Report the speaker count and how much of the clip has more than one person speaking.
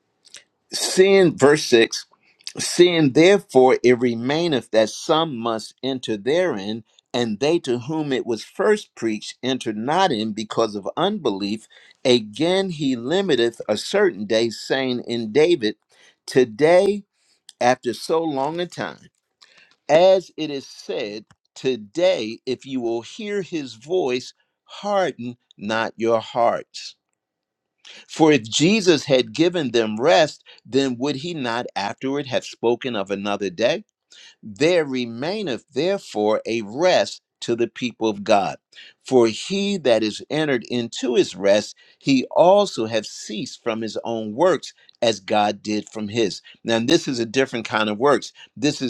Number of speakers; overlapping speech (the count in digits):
1, no overlap